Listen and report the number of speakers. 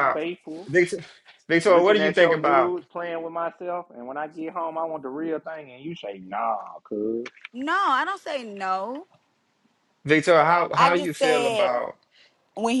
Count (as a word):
three